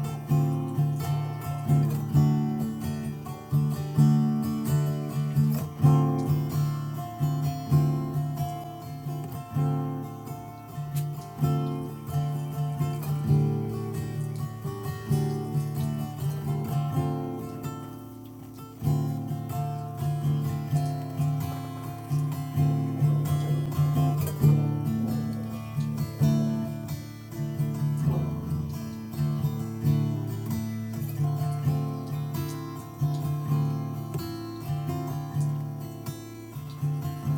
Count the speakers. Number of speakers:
zero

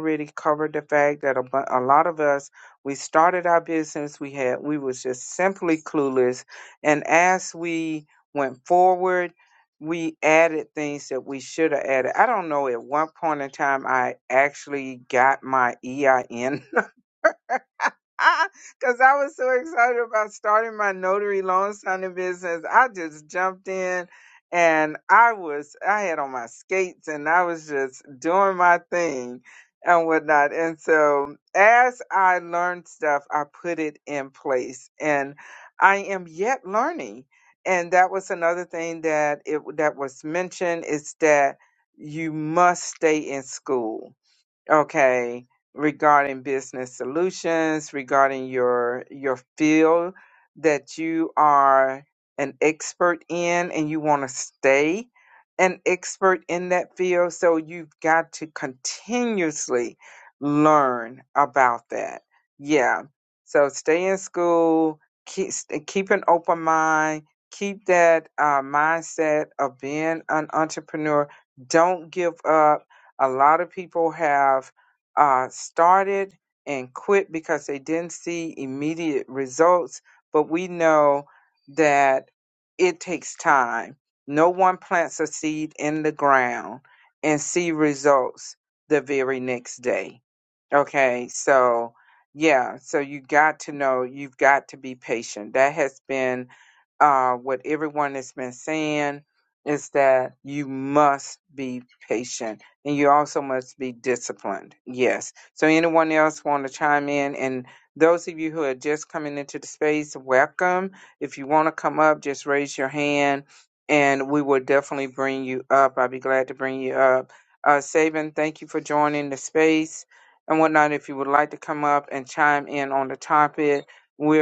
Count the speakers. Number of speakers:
one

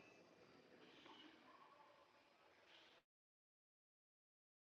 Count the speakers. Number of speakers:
zero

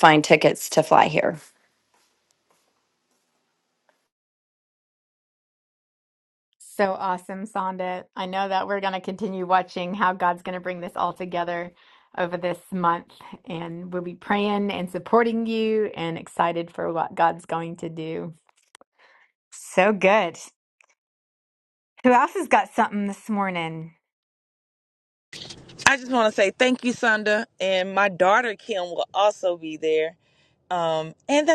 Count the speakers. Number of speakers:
three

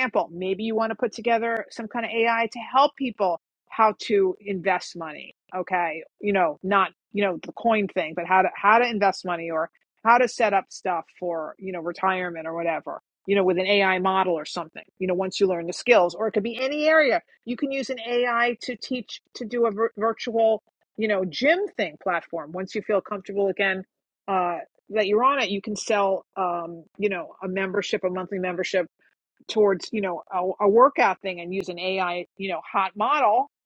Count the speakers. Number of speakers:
one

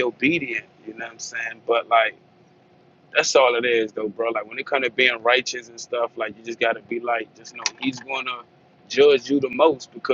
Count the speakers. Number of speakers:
one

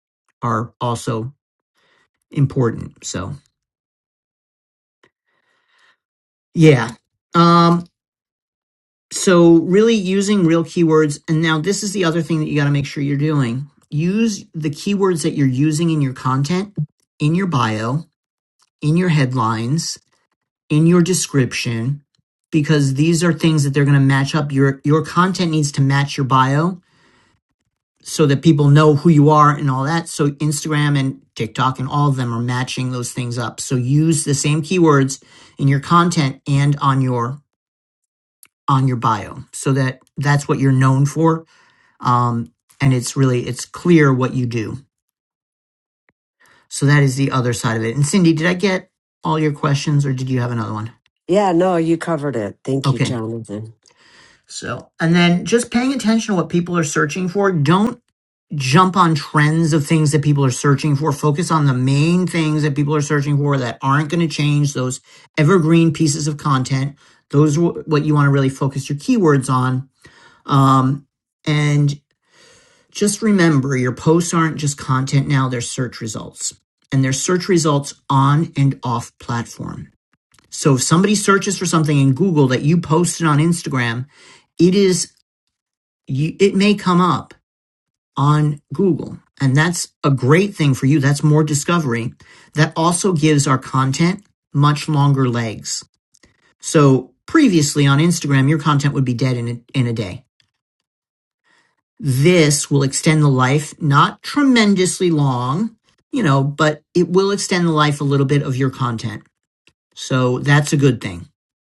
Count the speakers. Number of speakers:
two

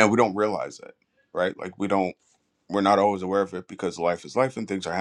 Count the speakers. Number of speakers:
one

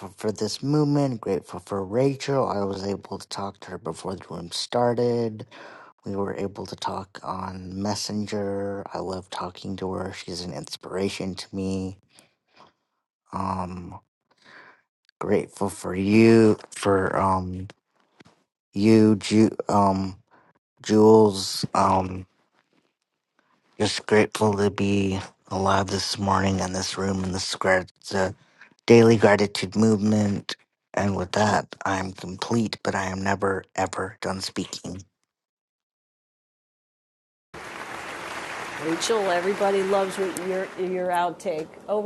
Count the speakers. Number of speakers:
two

